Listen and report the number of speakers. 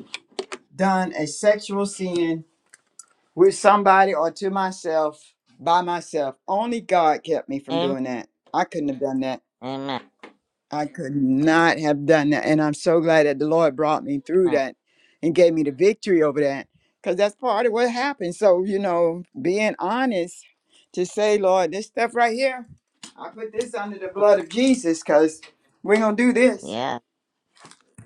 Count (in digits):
2